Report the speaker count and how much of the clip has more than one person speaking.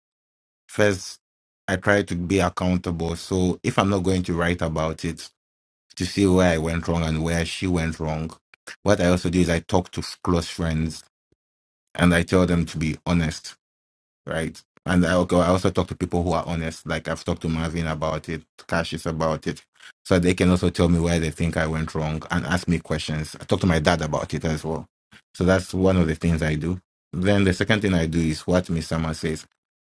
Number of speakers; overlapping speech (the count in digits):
1, no overlap